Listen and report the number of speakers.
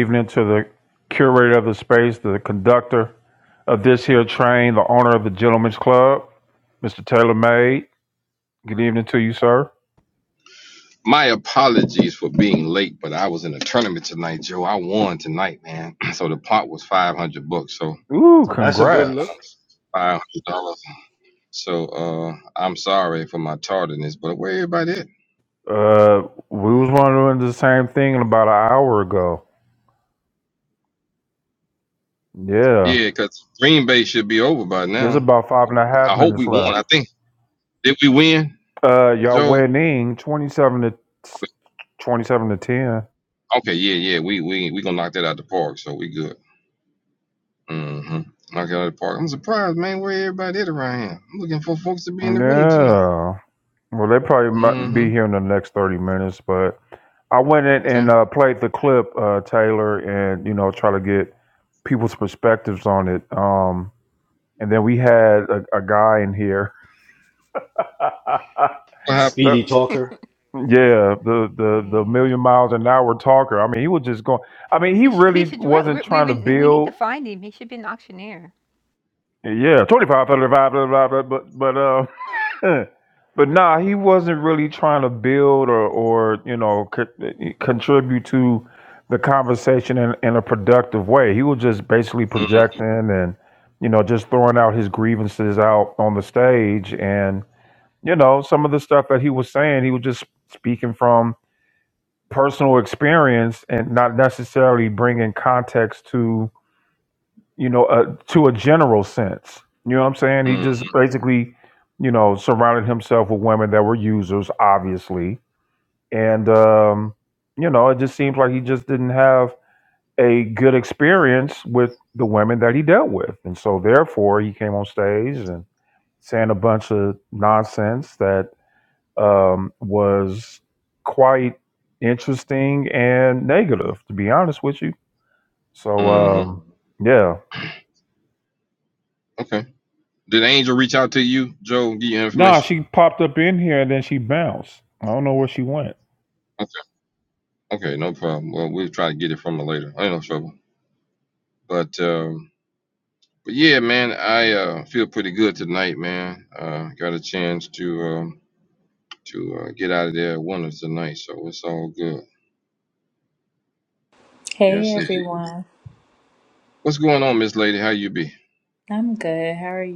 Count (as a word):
five